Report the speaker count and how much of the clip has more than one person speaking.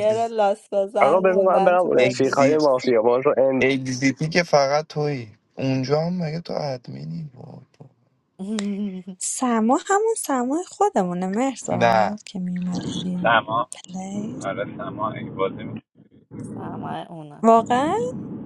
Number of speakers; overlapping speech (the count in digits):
5, about 13%